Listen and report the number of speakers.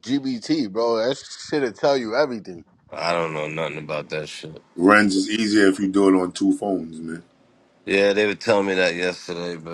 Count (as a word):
three